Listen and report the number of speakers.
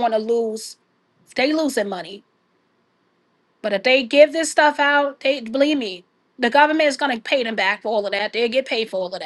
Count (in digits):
1